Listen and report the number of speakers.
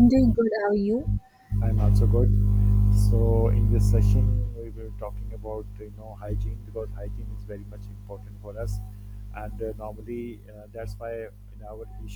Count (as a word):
two